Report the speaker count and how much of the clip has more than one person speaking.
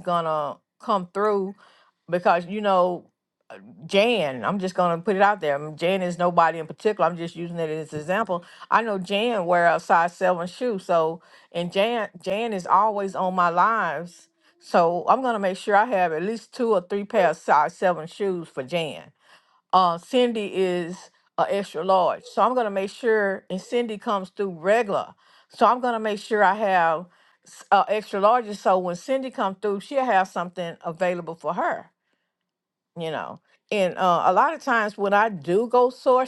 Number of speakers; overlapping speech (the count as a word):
one, no overlap